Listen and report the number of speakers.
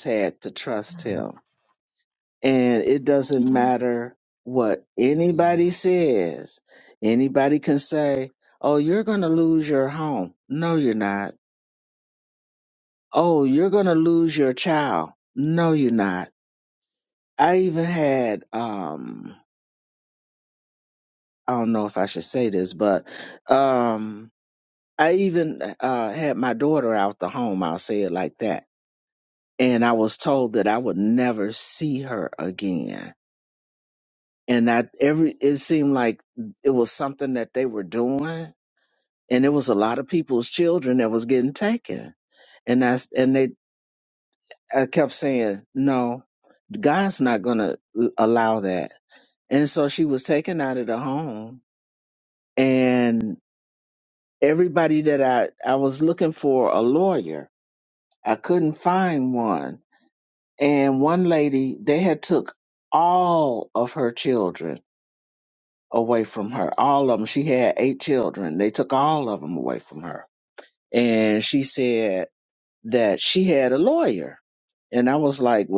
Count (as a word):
one